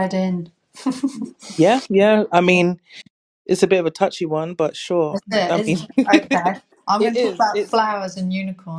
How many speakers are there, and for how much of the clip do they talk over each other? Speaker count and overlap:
two, about 15%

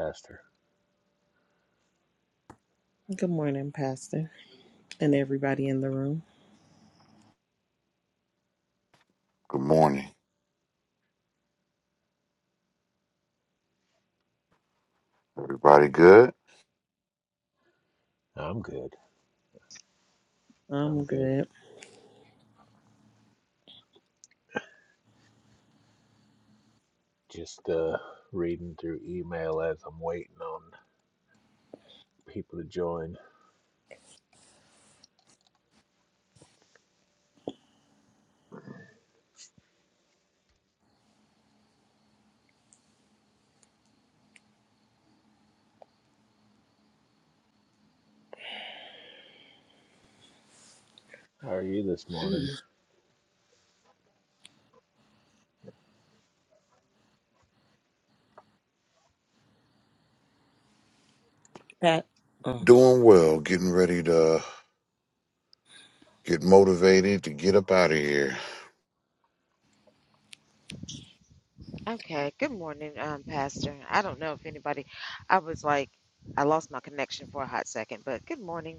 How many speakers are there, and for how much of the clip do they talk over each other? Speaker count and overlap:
four, about 1%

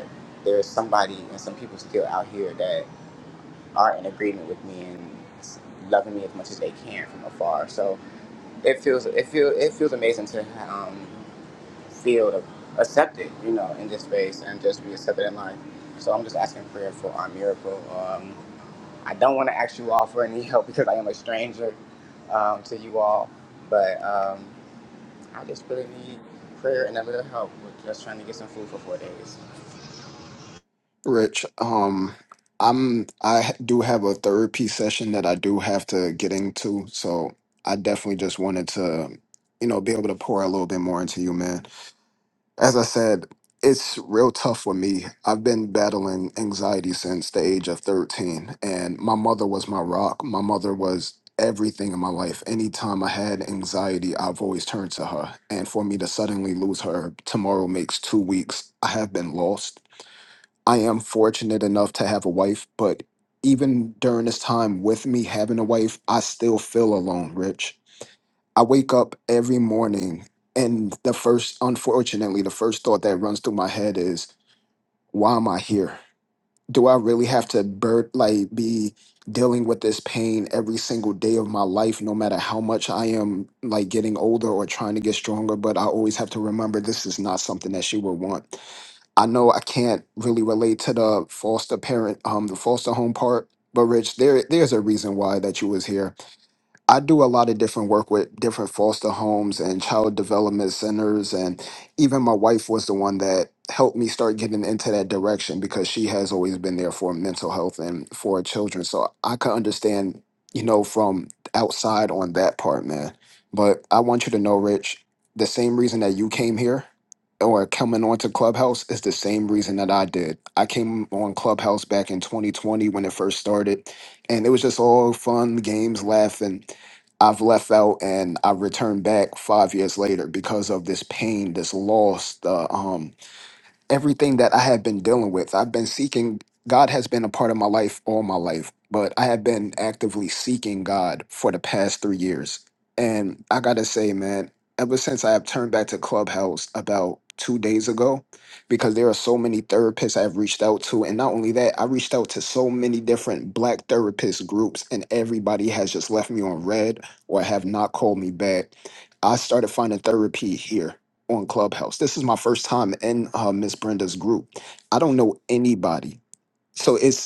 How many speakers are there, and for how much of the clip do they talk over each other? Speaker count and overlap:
two, no overlap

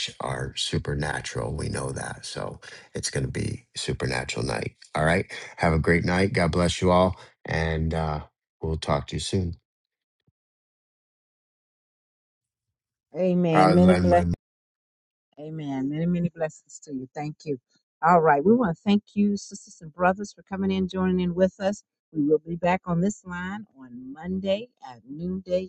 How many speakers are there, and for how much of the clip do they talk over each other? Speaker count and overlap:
two, about 3%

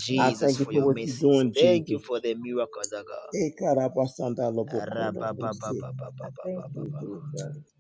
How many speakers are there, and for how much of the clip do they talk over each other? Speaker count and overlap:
three, about 19%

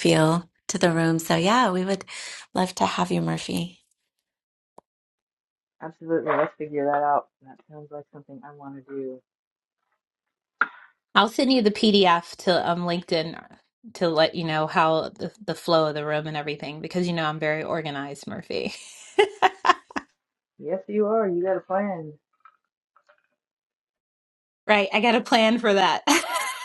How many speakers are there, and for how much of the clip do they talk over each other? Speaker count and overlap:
three, no overlap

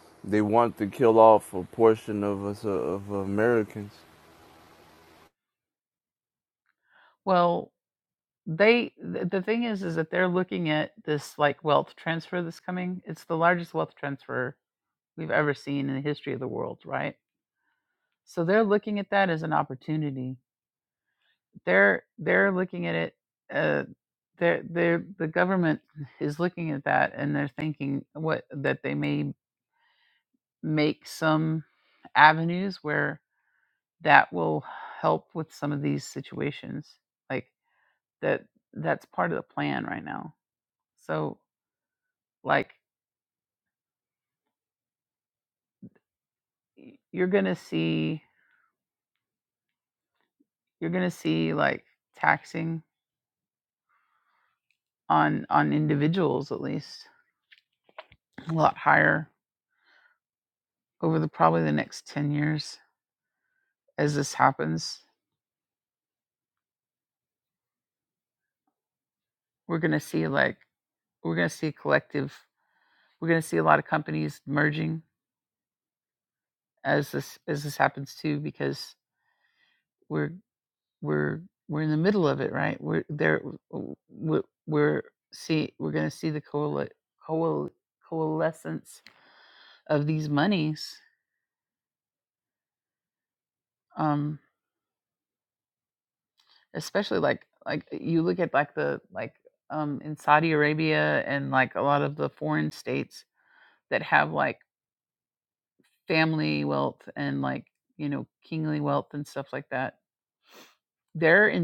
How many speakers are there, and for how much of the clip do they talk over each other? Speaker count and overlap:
two, no overlap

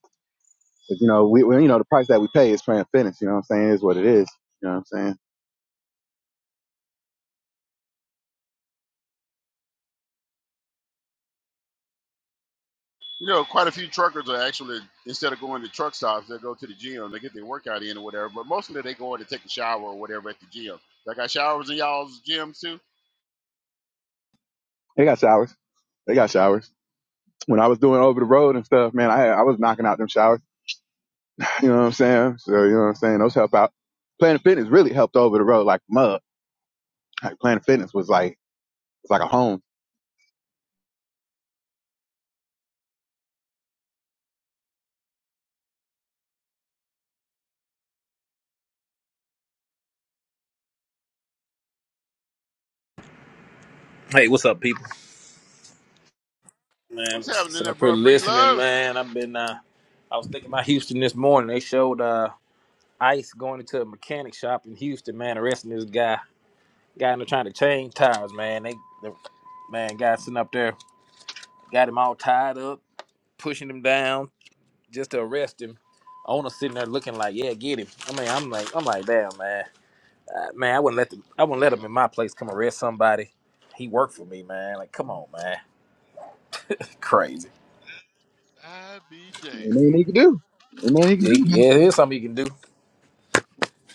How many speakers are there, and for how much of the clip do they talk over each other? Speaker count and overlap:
three, about 2%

